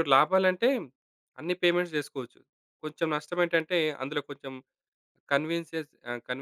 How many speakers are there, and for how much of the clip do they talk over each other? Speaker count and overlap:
1, no overlap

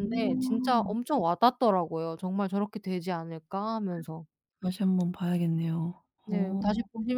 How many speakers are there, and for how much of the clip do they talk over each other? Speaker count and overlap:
2, about 18%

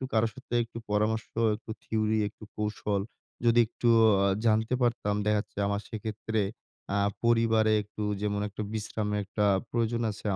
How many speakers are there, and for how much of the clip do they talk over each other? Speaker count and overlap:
1, no overlap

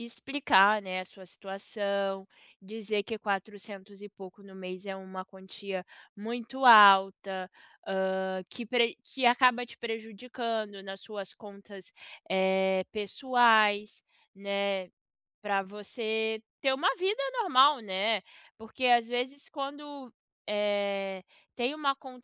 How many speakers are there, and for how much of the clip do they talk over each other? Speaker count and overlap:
1, no overlap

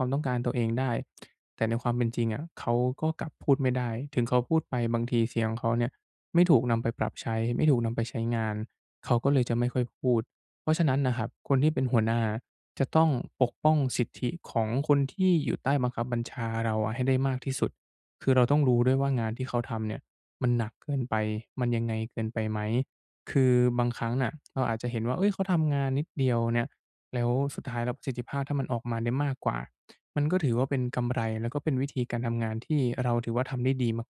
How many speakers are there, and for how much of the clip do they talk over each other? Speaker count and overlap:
1, no overlap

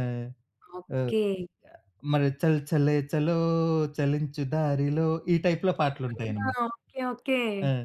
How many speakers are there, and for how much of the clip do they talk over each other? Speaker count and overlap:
2, about 8%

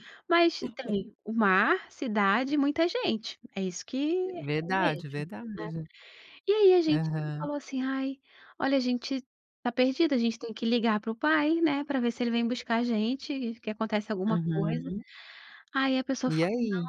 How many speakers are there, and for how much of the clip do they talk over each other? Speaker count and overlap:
2, about 12%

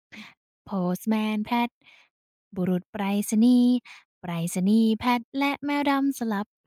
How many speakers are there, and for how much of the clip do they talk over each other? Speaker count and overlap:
1, no overlap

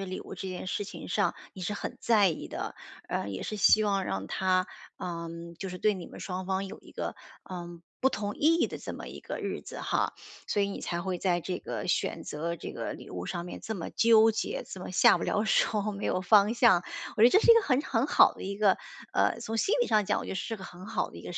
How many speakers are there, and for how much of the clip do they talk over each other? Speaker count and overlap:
1, no overlap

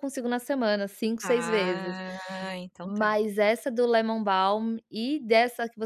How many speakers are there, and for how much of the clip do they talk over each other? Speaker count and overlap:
2, about 17%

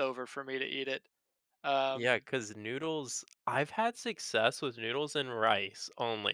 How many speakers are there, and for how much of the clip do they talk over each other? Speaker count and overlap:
2, about 1%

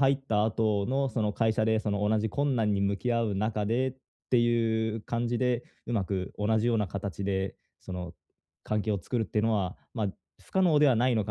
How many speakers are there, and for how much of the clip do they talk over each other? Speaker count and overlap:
1, no overlap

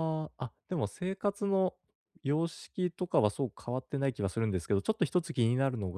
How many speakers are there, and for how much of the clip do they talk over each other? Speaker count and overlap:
1, no overlap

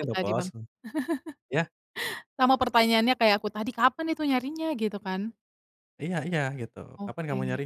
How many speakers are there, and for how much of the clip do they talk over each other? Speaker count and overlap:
2, about 14%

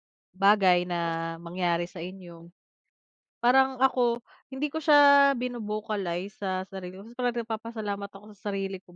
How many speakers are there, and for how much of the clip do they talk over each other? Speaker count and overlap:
1, no overlap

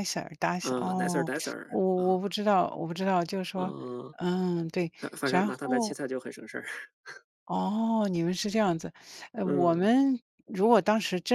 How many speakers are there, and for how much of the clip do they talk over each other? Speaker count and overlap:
2, about 22%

